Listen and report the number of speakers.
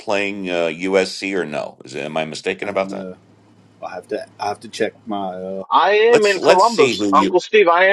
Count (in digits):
3